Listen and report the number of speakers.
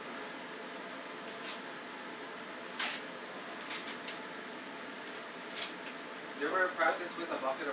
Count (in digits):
1